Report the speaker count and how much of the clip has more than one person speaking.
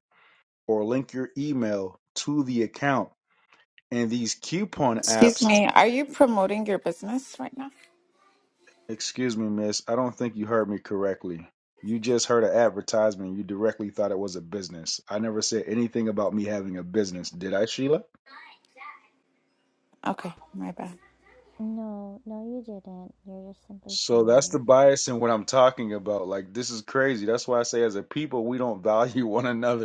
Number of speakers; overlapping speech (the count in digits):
3, about 4%